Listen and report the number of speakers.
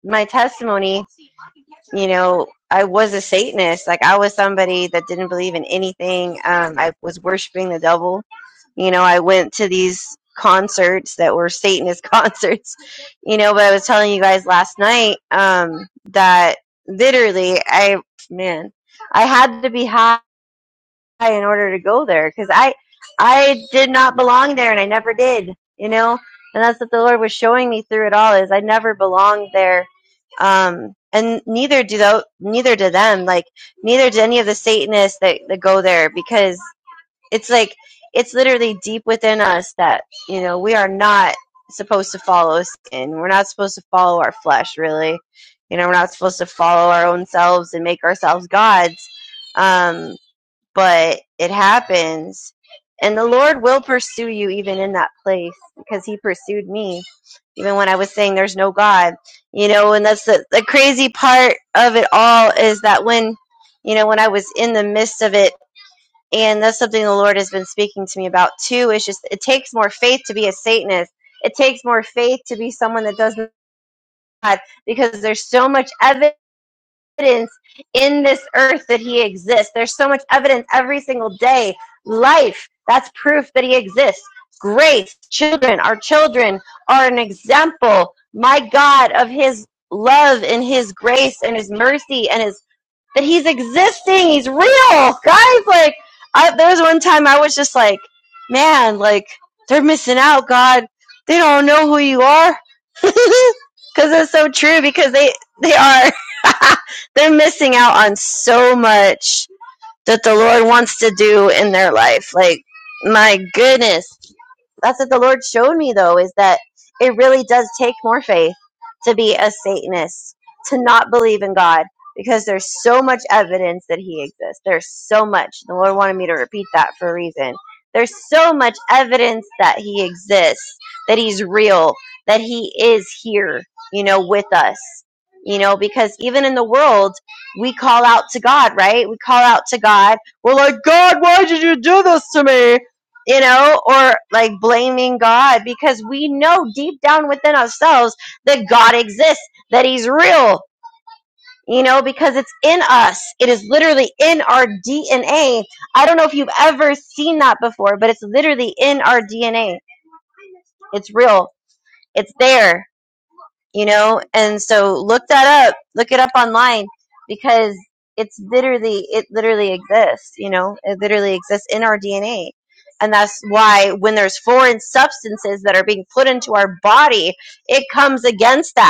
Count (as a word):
one